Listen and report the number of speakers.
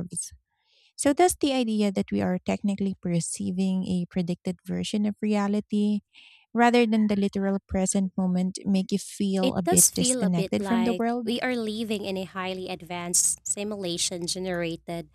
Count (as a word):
two